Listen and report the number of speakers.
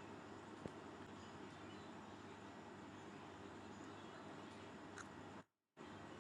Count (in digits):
0